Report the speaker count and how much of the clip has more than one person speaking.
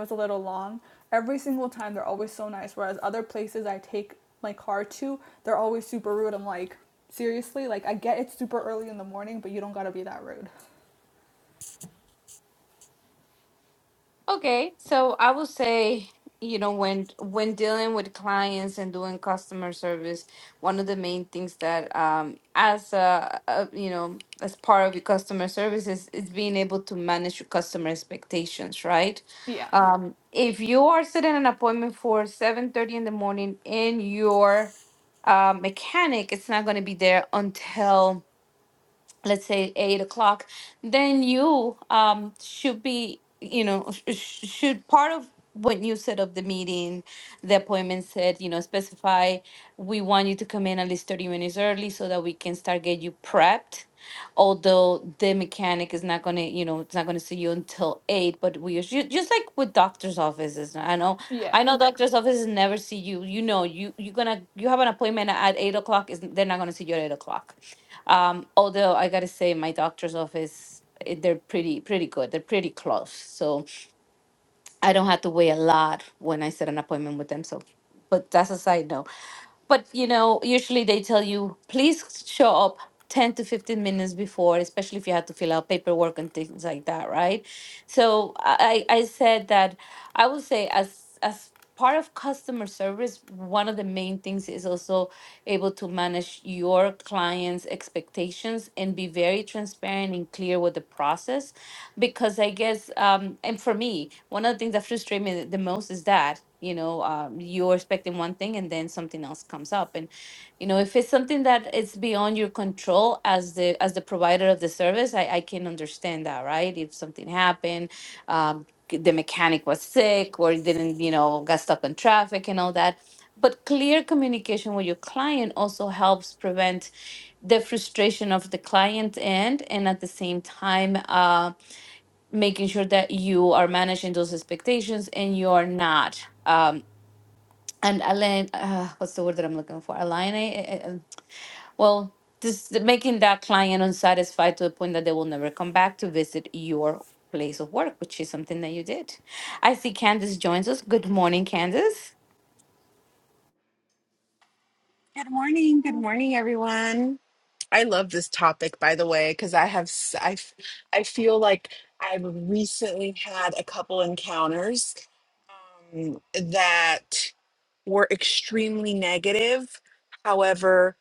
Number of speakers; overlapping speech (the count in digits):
3, under 1%